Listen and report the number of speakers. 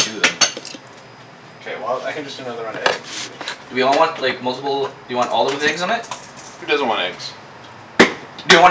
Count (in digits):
2